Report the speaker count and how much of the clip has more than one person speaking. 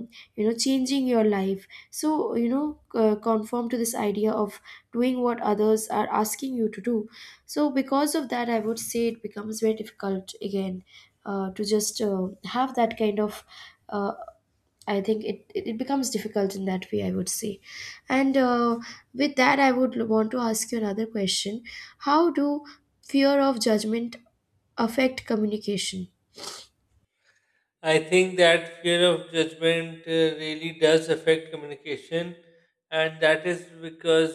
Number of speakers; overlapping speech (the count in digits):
2, no overlap